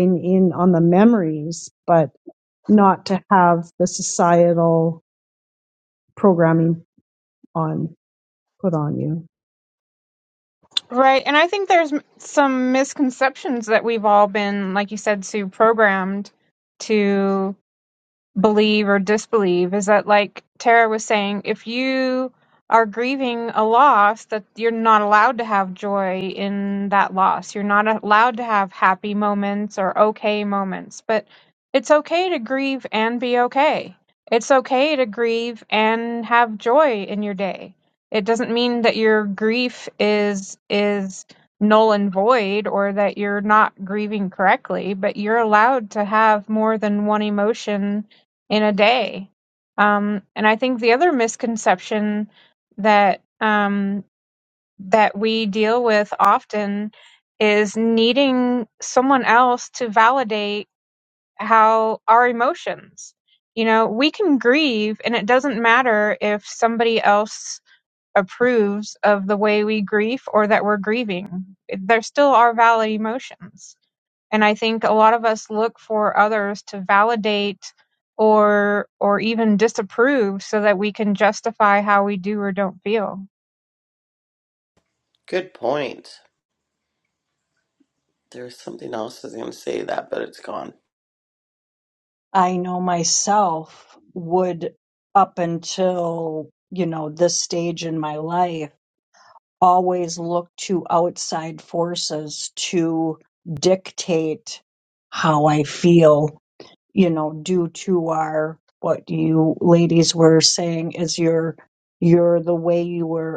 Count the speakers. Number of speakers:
4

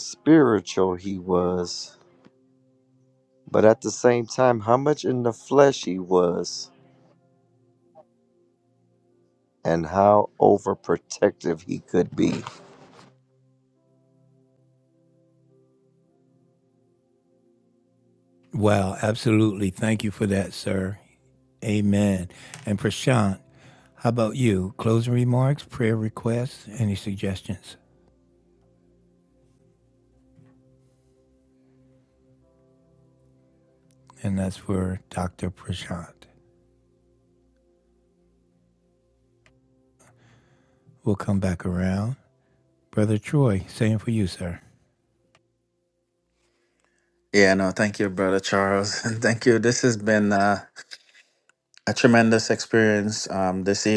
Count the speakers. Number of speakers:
3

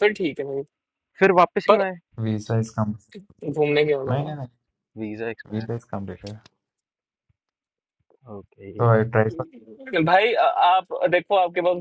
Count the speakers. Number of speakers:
3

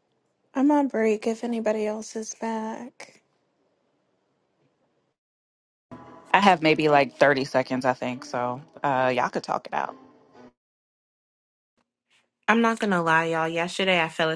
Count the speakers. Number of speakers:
3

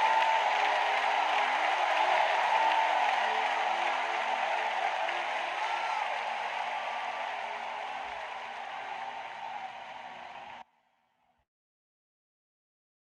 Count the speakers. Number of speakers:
0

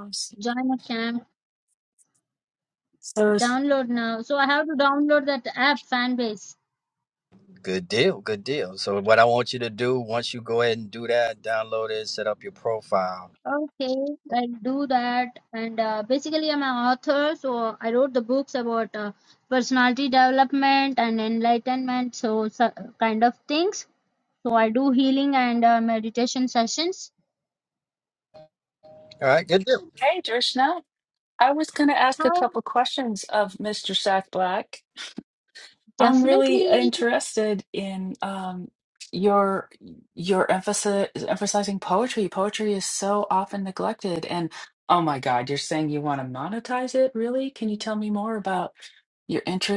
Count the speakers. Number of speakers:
3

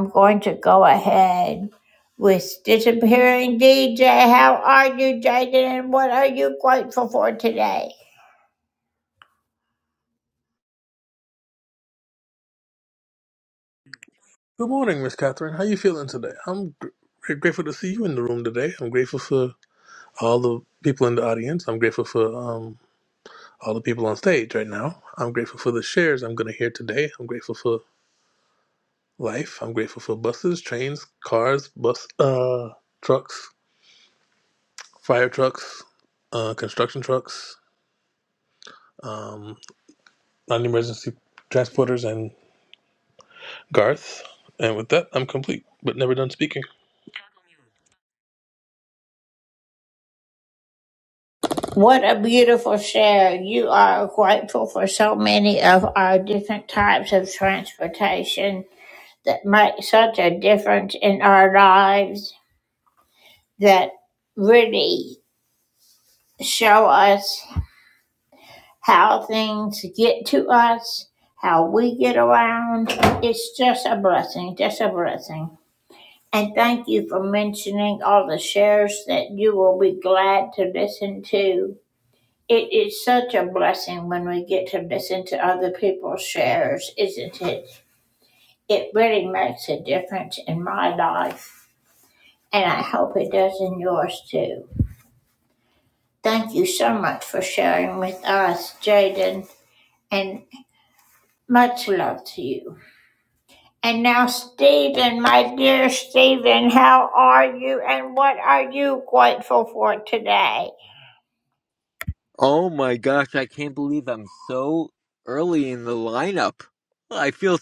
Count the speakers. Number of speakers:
3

